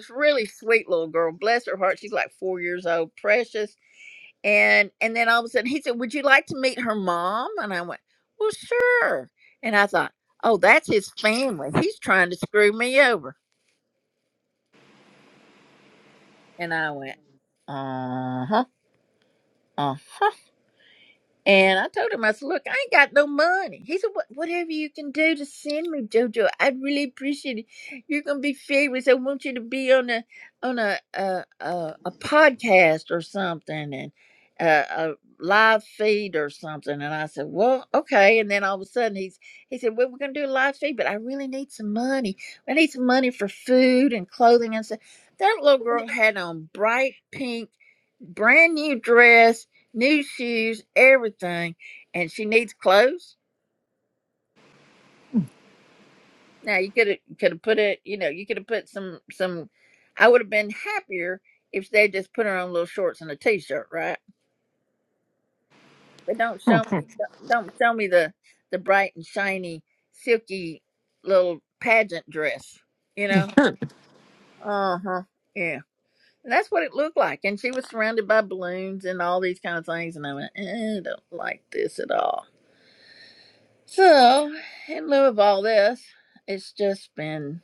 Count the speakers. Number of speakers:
1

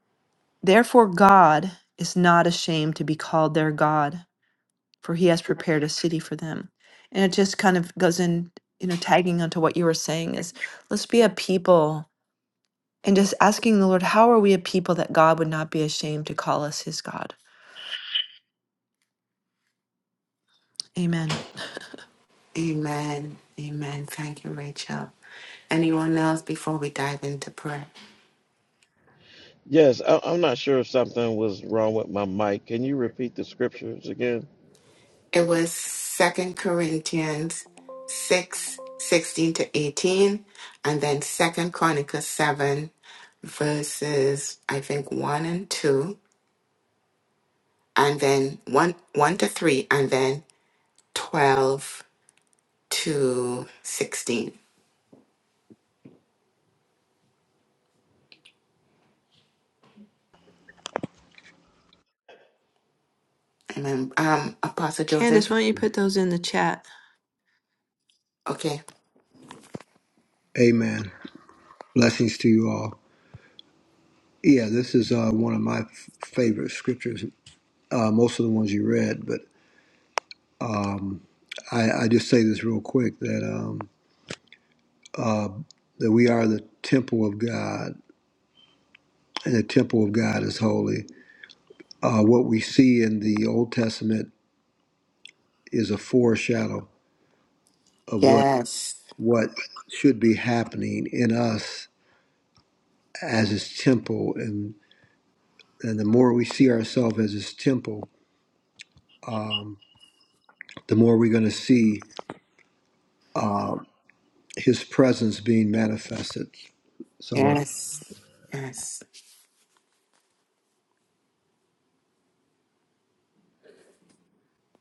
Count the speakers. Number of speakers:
4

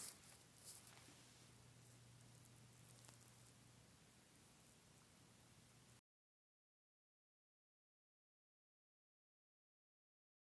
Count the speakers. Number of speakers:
0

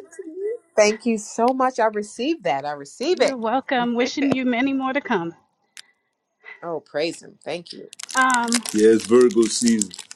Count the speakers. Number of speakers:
3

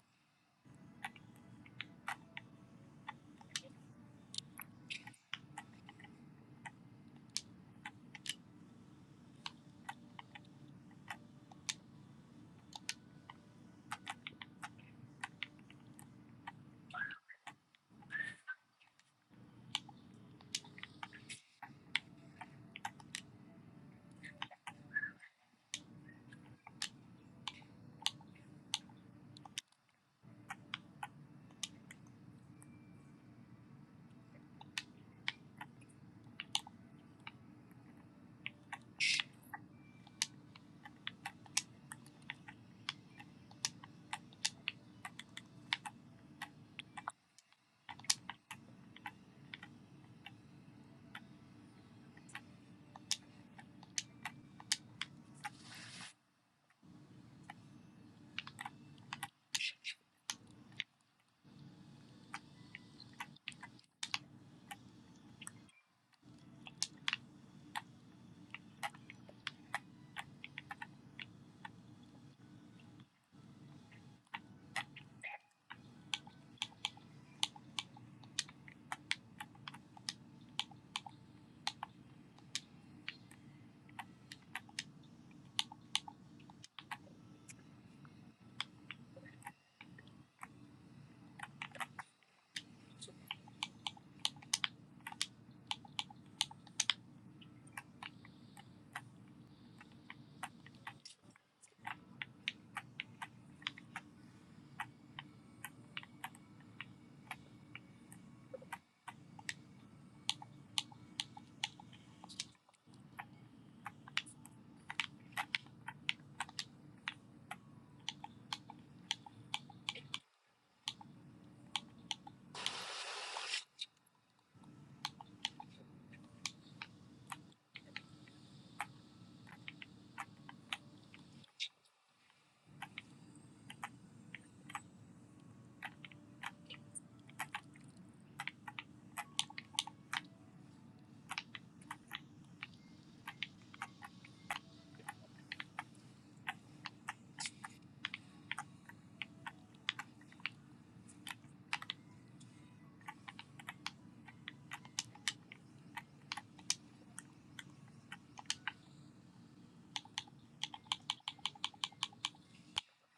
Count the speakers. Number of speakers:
0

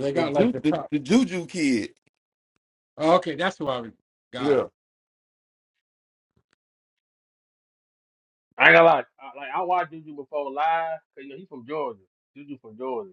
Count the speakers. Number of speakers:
3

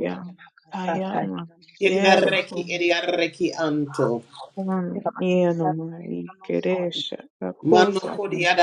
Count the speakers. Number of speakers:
3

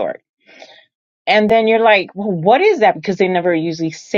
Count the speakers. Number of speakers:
1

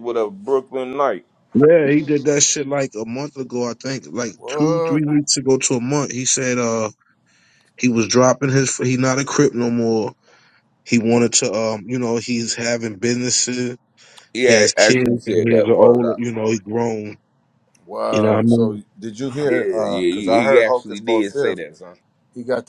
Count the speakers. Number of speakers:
3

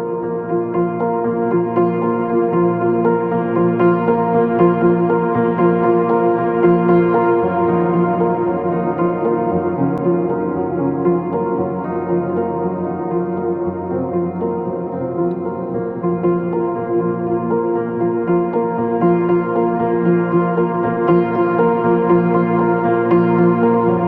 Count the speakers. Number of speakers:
0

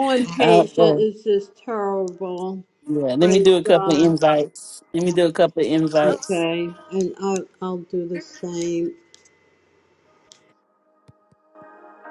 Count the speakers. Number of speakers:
2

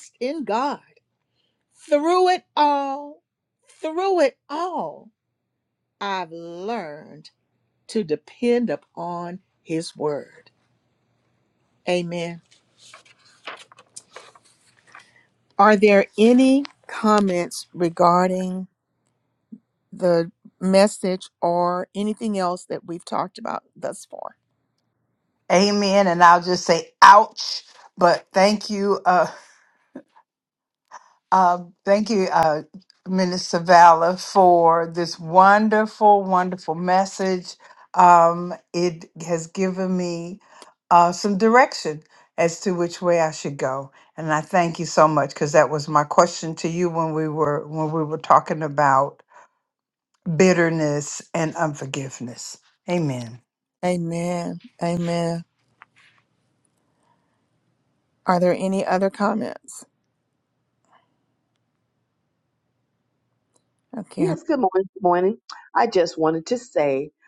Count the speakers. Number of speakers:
3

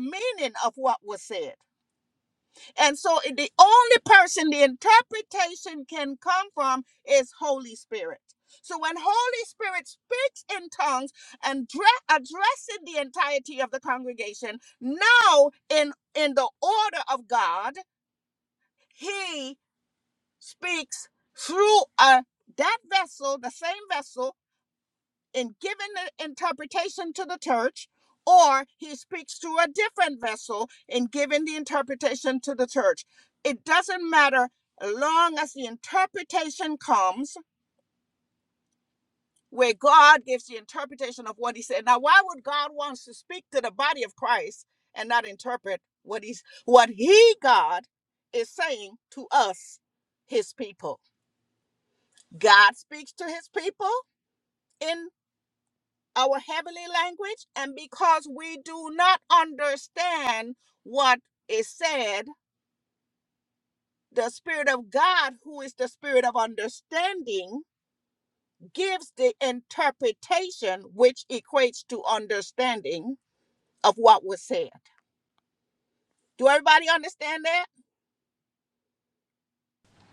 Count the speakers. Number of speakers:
1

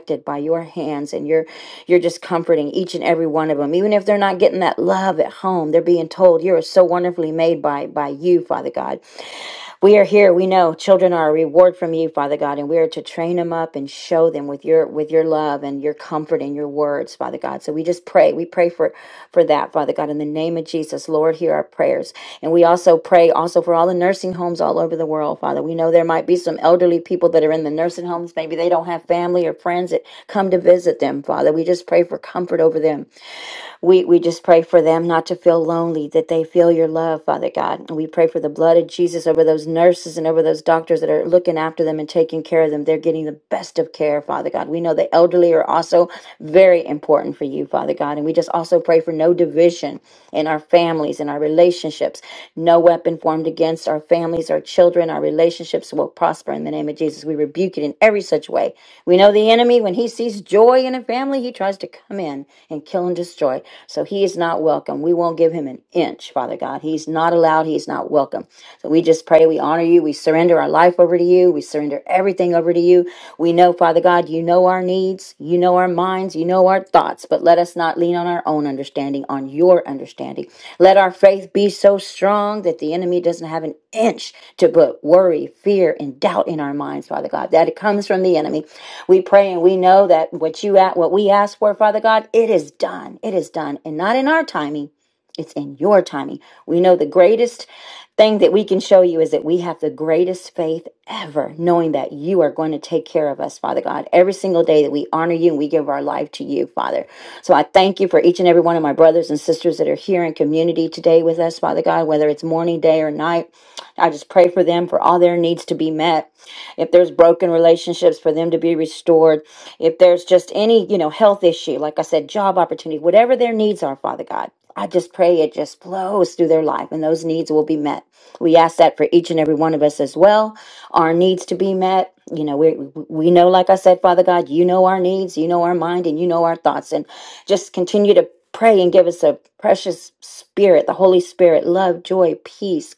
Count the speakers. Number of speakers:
1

